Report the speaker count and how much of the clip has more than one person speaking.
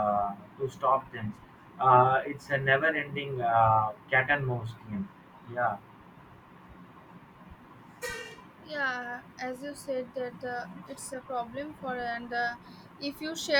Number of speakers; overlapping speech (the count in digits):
2, no overlap